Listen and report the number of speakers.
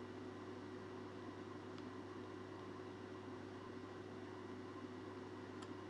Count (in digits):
0